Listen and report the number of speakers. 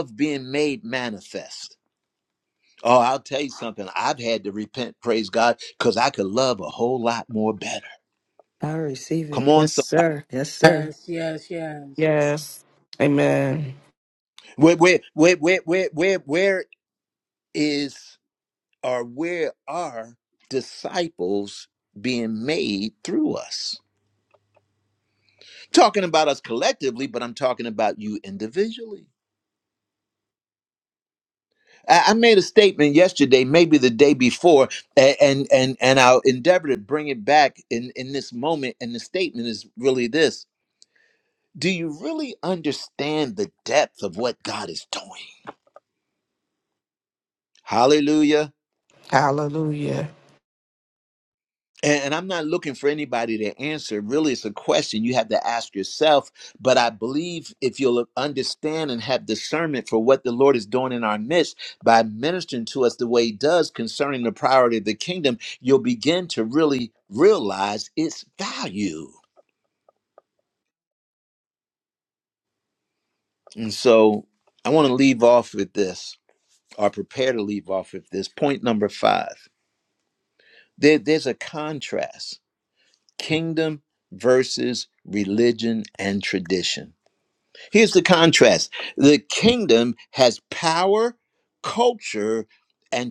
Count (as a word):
four